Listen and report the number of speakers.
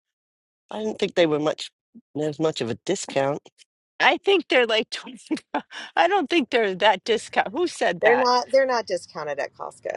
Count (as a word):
three